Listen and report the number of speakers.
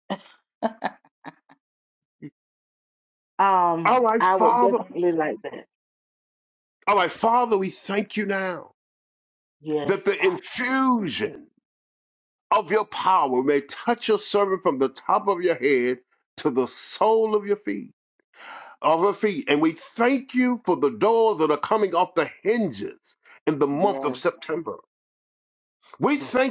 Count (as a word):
two